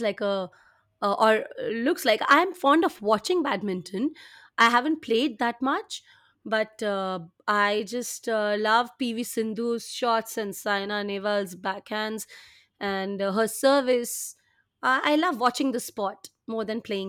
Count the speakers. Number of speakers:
1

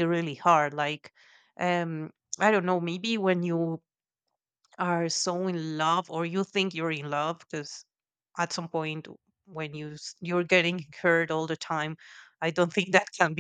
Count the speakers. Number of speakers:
1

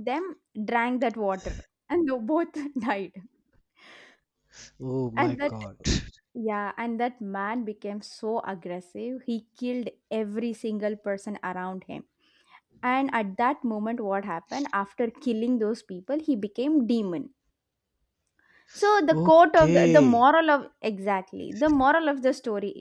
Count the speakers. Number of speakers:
2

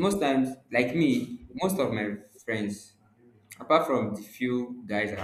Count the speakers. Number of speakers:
1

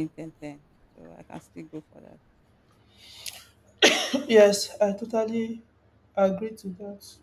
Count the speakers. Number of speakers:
2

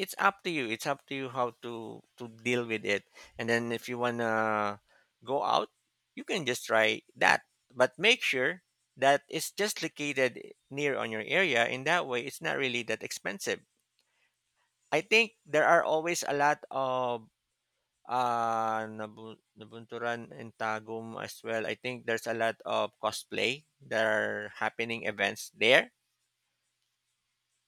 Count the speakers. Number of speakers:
1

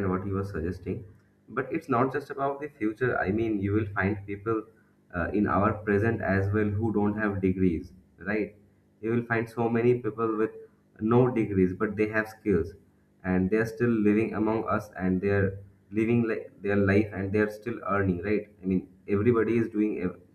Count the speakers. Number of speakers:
1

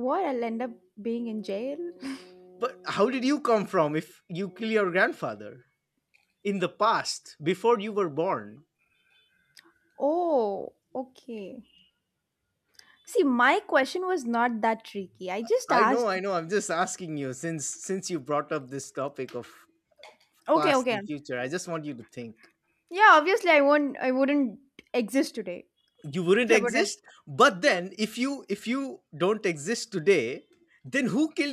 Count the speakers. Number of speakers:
2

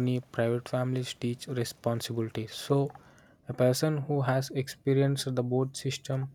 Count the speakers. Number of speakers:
1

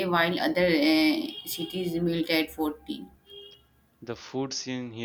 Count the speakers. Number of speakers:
2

